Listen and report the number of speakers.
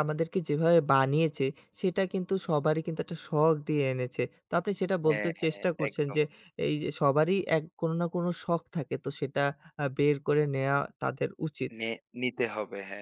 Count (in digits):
2